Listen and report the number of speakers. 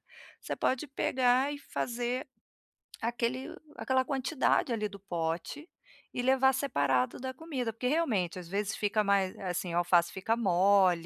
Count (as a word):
one